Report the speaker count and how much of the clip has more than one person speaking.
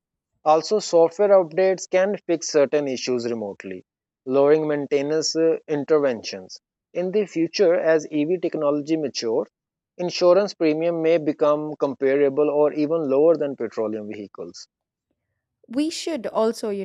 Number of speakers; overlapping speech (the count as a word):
two, no overlap